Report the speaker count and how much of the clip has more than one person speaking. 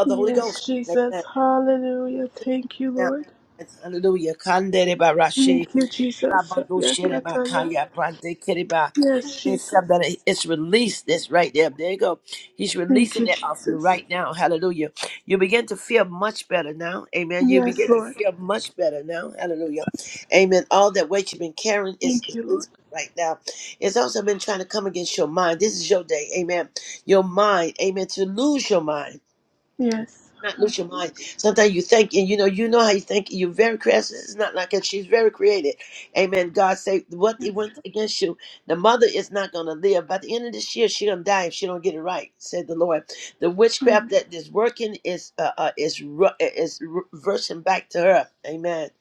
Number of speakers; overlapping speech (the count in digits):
2, about 14%